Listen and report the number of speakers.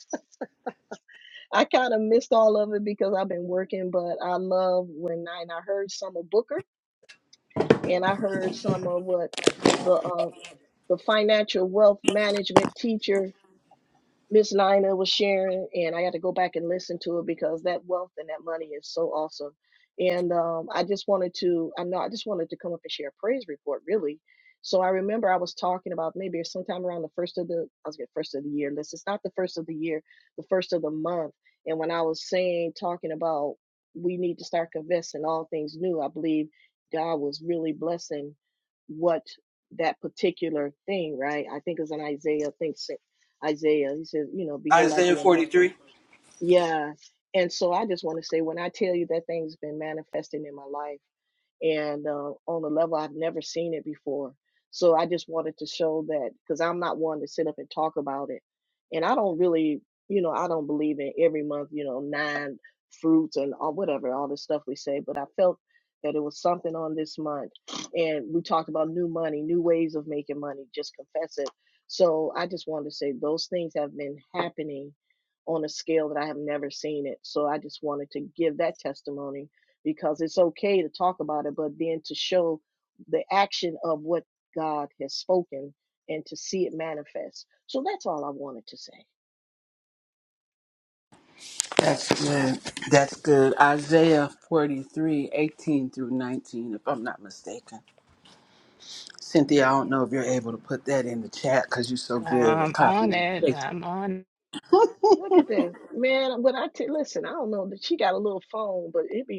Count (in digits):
3